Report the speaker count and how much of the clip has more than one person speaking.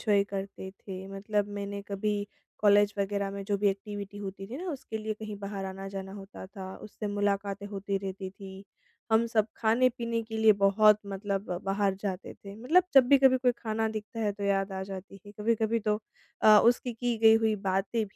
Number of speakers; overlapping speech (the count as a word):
one, no overlap